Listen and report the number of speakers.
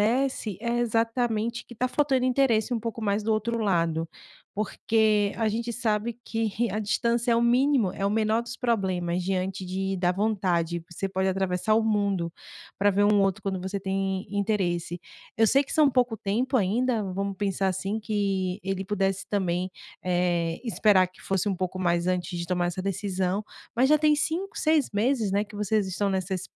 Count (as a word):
one